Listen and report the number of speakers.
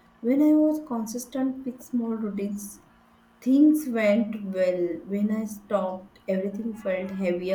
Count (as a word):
one